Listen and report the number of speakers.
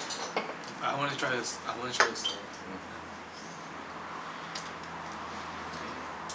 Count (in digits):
1